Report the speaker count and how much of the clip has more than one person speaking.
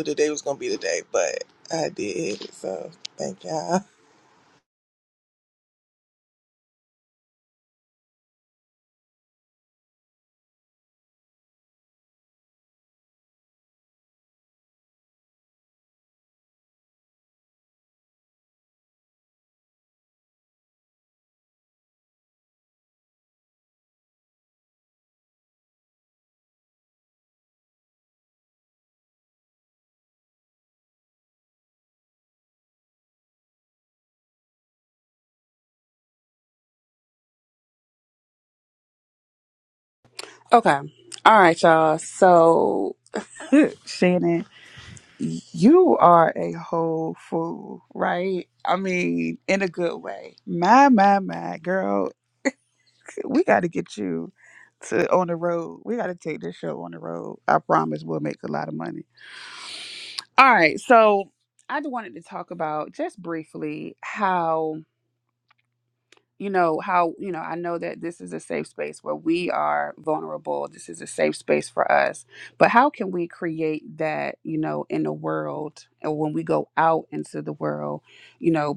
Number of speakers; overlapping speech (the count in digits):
2, no overlap